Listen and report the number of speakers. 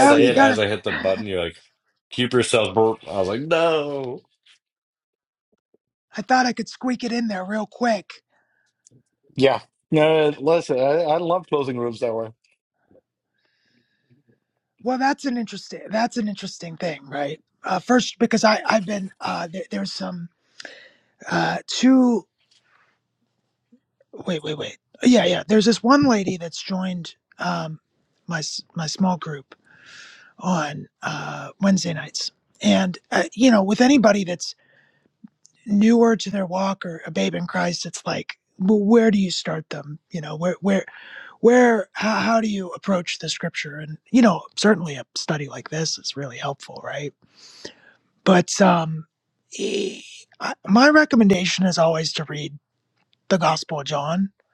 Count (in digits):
3